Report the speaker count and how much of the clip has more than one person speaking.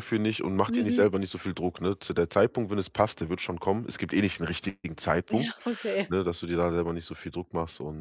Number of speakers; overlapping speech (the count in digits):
2, about 8%